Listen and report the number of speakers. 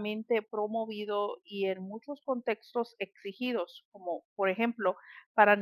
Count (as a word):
one